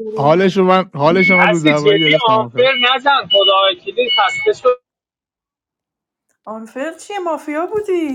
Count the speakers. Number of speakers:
3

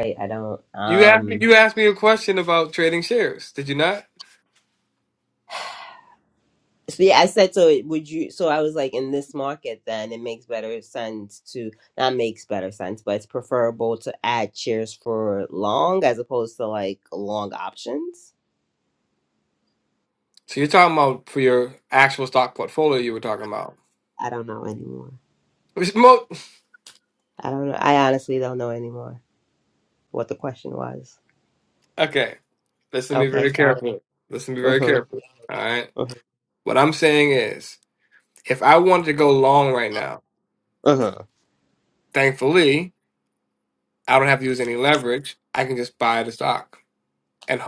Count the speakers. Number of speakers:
2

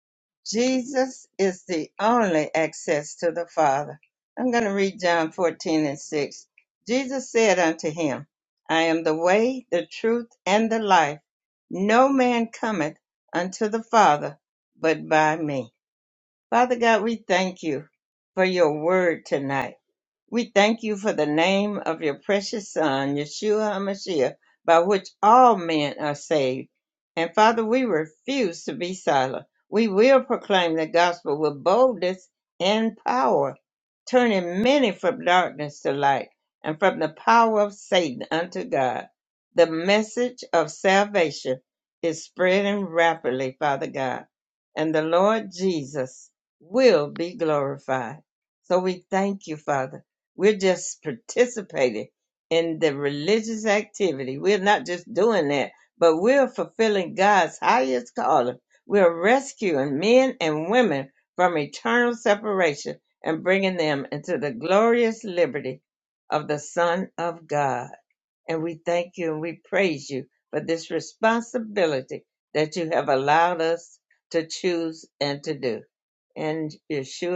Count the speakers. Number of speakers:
1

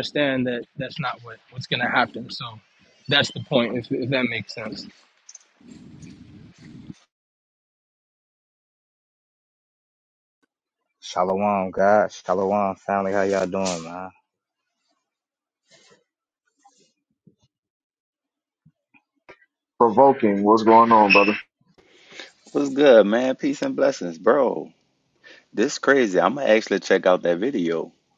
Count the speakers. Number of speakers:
4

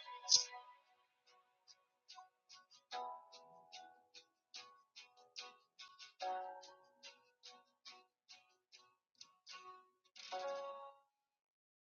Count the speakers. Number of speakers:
0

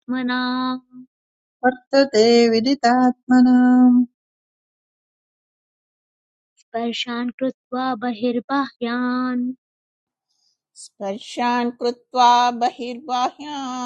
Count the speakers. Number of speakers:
3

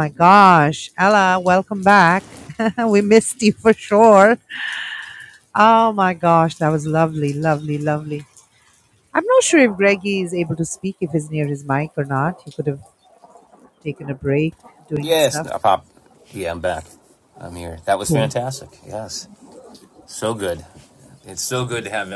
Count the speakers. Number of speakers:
2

